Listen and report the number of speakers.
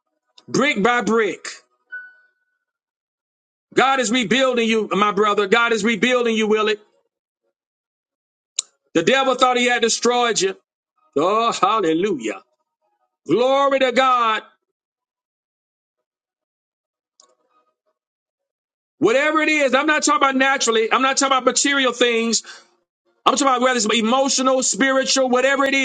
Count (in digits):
1